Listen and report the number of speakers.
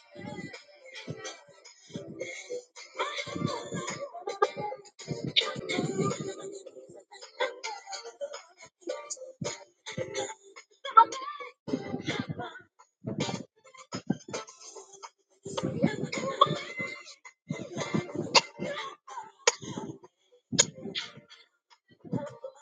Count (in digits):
0